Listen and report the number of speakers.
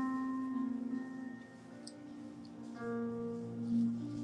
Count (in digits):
0